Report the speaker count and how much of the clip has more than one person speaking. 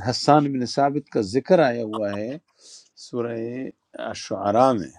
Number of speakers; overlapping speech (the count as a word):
one, no overlap